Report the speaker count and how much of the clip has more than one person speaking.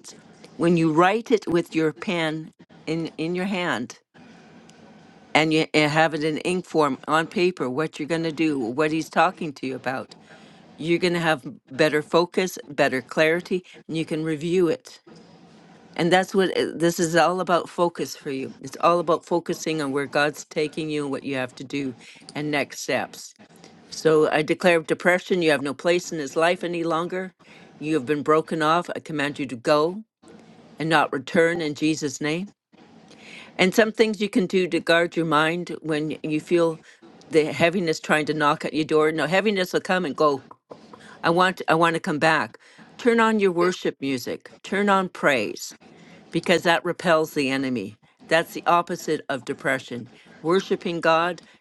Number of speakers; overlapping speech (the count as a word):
one, no overlap